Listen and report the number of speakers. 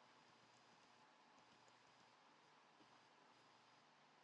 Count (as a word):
zero